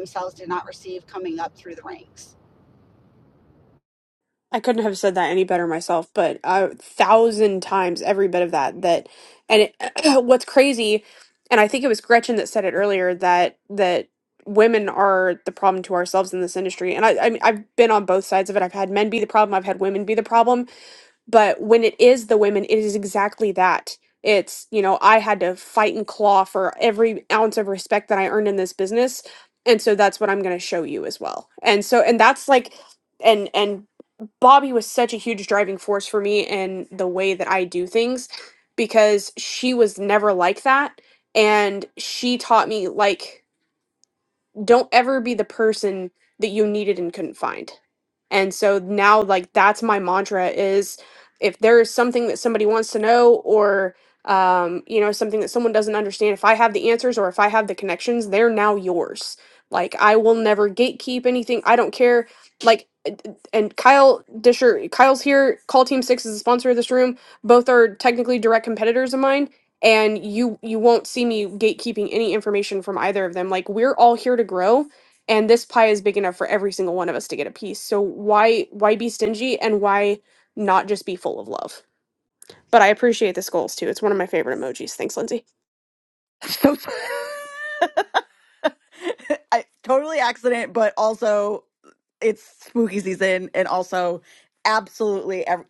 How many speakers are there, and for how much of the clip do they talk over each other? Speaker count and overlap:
3, no overlap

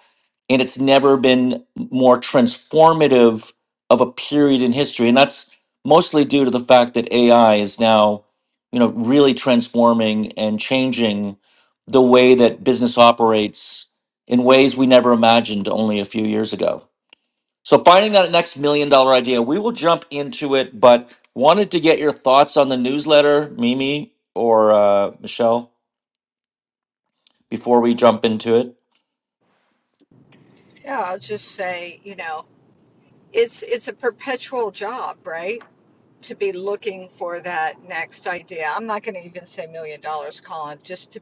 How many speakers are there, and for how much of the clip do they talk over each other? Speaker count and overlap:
2, no overlap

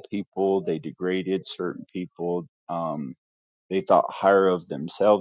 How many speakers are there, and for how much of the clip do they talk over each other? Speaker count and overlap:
1, no overlap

